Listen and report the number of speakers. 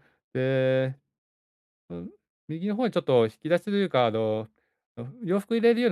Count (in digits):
1